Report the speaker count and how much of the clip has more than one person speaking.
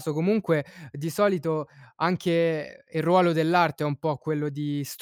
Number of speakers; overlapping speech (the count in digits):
1, no overlap